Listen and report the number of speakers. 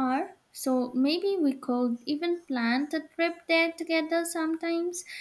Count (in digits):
1